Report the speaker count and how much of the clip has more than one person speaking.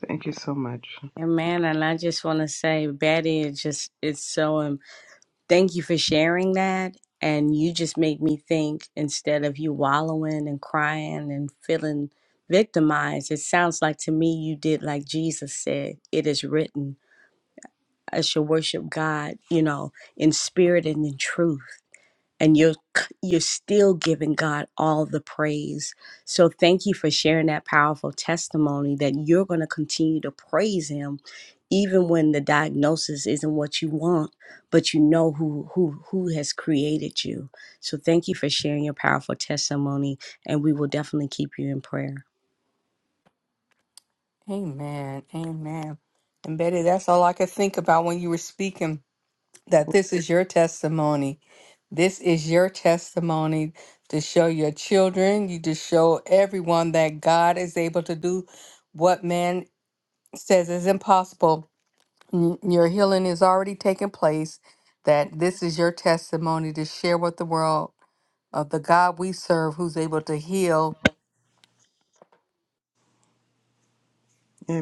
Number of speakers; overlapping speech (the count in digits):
3, no overlap